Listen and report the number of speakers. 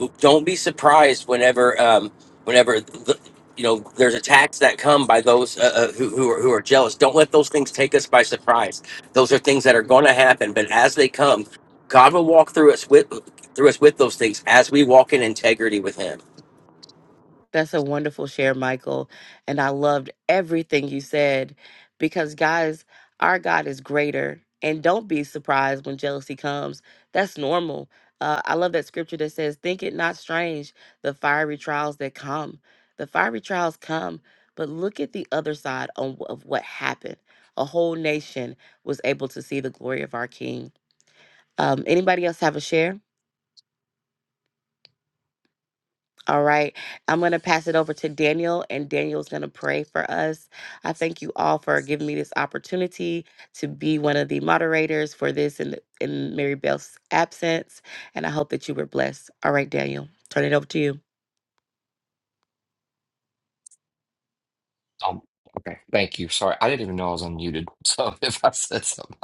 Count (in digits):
3